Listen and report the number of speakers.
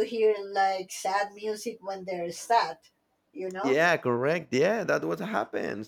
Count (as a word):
two